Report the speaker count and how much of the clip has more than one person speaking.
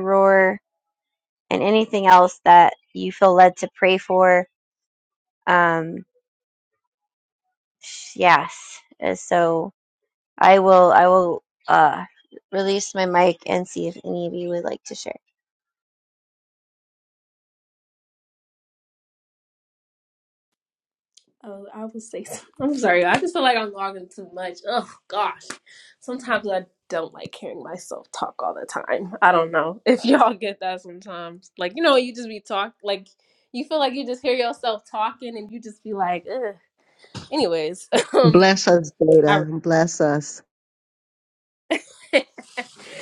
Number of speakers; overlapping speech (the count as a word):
three, about 1%